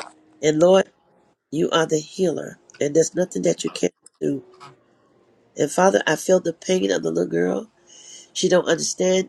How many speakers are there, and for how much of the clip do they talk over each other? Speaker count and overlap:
one, no overlap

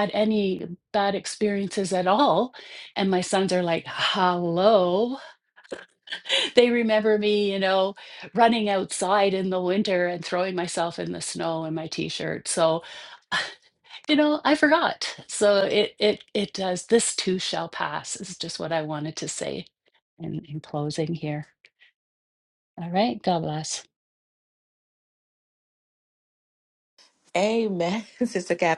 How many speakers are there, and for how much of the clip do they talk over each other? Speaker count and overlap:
two, no overlap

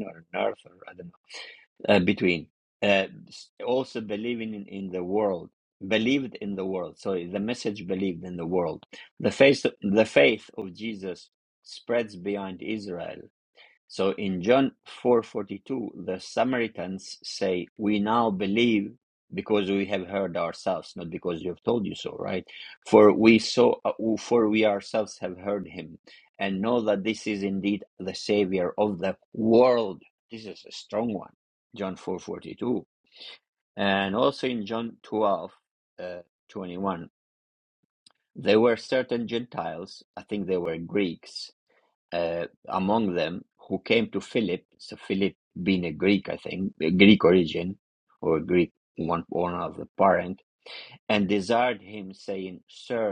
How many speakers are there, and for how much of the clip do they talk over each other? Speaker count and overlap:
one, no overlap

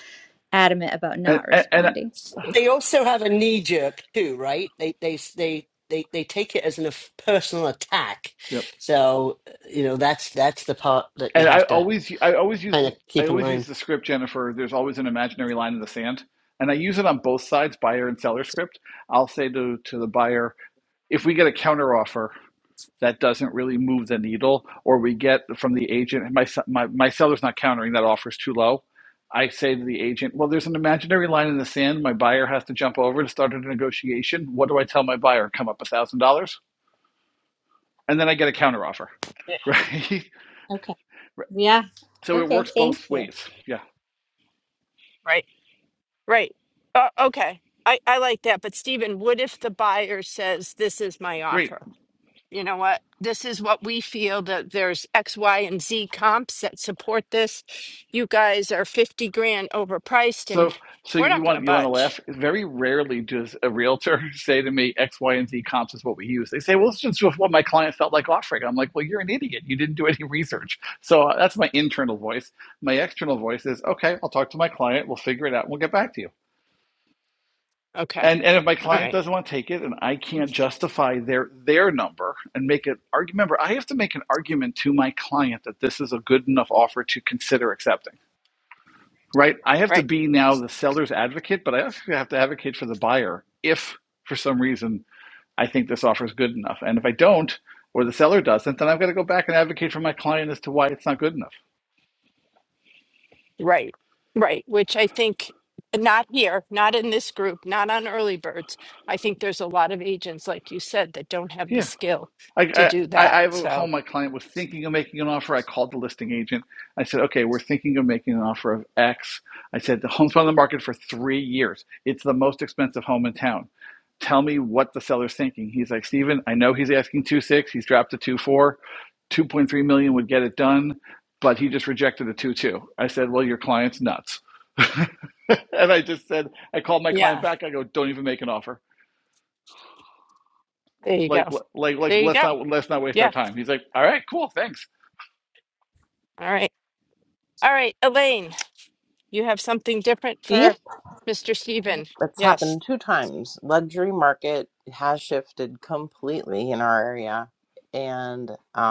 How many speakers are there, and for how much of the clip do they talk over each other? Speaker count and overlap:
five, about 5%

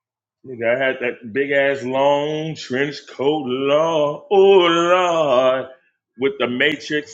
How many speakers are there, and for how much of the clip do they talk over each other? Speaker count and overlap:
one, no overlap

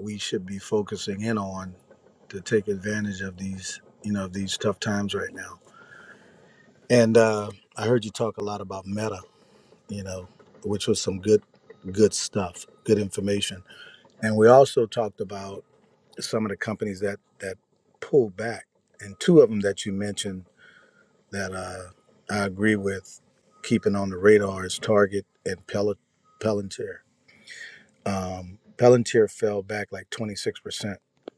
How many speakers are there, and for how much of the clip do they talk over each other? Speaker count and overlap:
one, no overlap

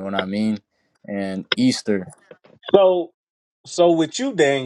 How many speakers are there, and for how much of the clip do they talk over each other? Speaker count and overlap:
two, no overlap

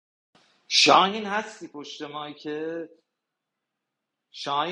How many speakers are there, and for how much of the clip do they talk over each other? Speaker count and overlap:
one, no overlap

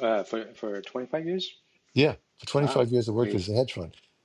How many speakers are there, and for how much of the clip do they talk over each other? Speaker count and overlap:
two, about 11%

